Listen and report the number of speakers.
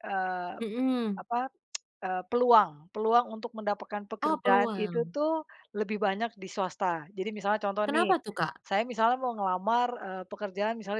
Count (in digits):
2